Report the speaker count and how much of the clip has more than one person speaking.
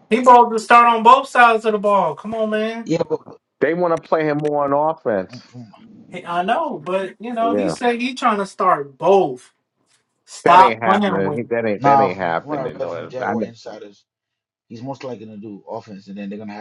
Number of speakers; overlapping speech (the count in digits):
3, about 18%